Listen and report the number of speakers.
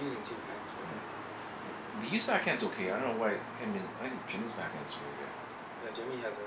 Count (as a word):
two